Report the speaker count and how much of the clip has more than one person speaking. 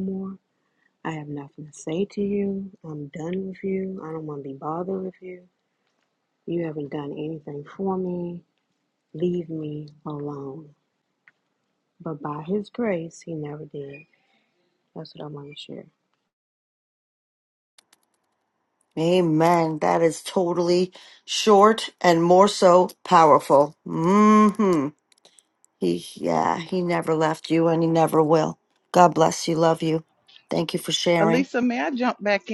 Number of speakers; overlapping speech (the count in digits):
3, about 1%